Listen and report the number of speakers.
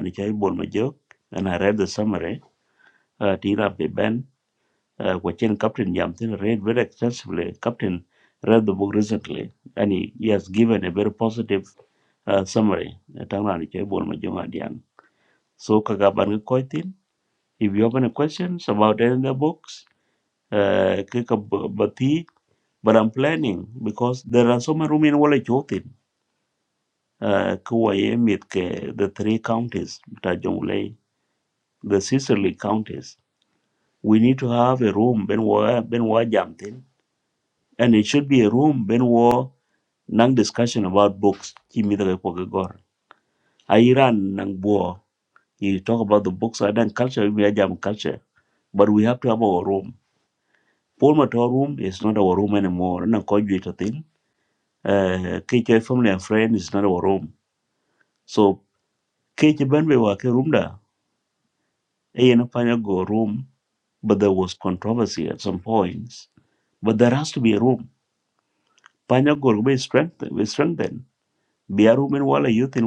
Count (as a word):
one